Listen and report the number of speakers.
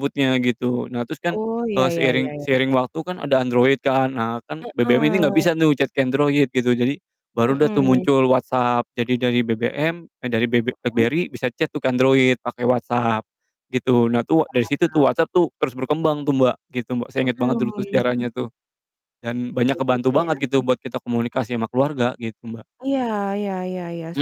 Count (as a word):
two